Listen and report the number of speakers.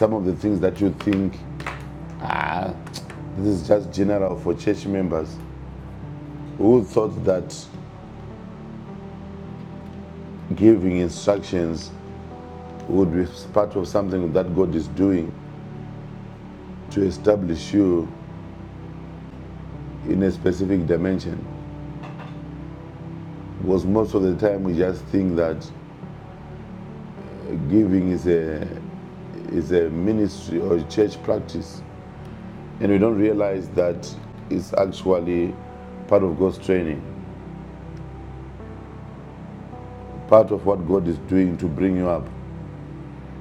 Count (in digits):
1